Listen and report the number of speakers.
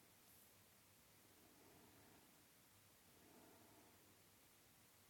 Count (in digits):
0